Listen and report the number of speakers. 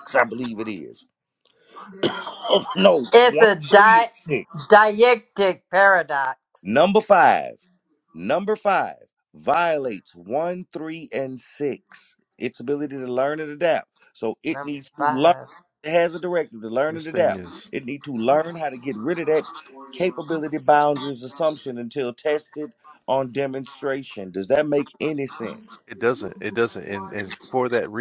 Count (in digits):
3